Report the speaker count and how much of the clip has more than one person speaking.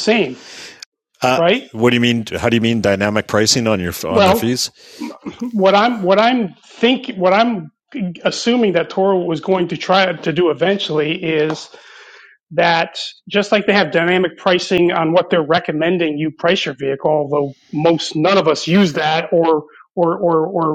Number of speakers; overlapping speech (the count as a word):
two, about 3%